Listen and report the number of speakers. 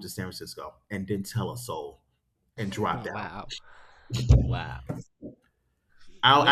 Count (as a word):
two